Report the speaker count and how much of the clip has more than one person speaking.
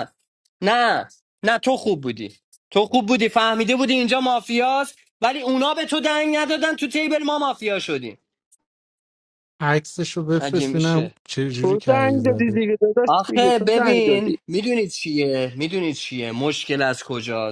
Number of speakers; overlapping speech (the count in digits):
3, about 17%